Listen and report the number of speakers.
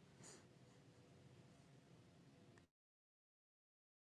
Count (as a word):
zero